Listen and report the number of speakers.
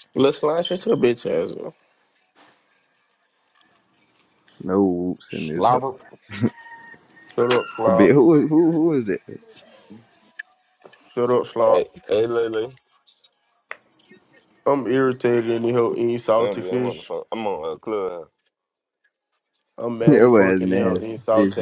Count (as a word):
three